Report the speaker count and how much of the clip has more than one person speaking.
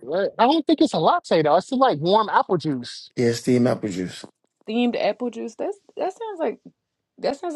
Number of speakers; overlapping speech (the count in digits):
3, no overlap